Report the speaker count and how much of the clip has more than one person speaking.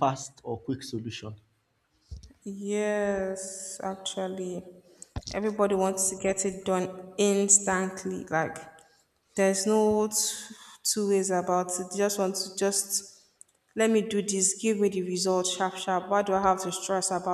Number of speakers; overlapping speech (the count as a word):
two, no overlap